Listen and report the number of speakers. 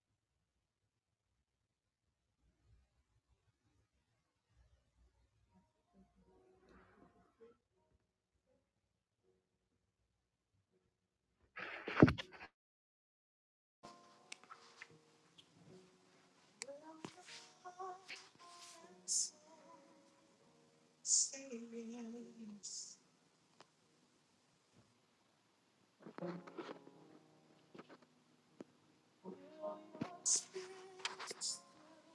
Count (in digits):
0